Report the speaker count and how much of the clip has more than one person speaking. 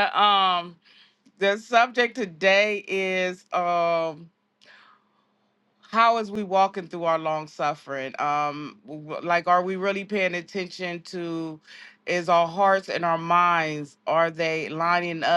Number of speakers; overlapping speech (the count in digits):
1, no overlap